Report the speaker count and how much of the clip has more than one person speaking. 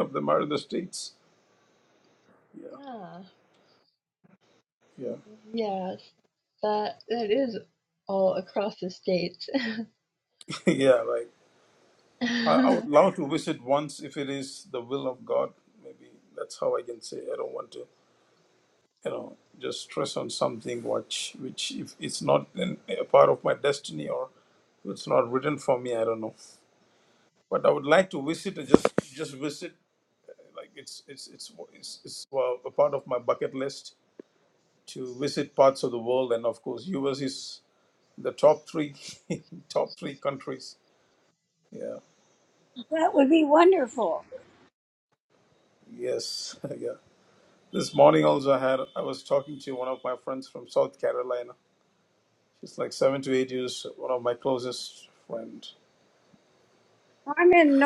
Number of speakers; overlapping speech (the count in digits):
3, about 1%